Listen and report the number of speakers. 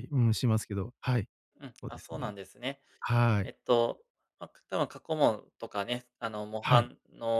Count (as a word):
two